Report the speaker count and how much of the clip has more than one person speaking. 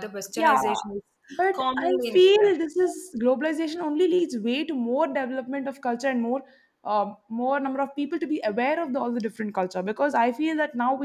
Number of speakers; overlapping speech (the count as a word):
two, about 12%